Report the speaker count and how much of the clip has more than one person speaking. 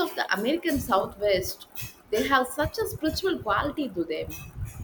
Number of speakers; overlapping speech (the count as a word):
one, no overlap